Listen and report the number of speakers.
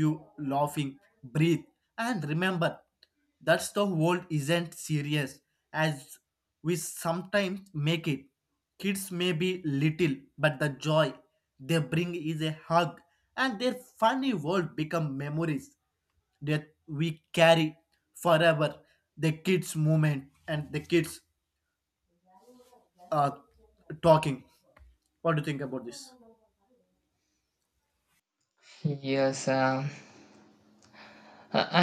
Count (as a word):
two